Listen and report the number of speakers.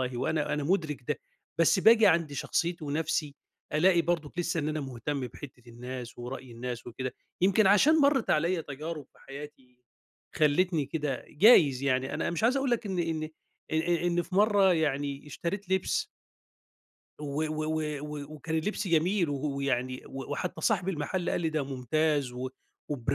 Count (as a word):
one